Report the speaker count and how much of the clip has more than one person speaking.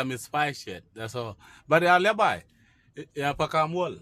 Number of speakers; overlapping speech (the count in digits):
1, no overlap